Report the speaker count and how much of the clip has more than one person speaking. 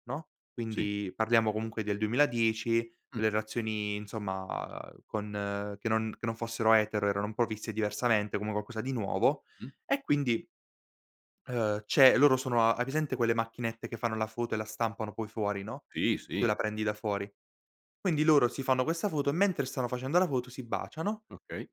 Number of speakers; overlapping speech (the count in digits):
2, about 1%